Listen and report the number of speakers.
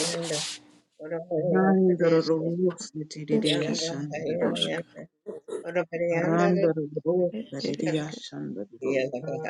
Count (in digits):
3